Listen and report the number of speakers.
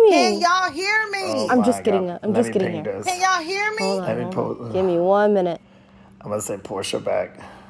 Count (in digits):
3